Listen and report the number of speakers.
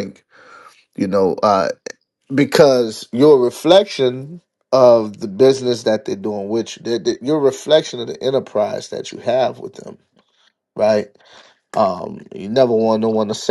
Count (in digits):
1